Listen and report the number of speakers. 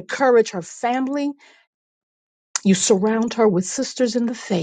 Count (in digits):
1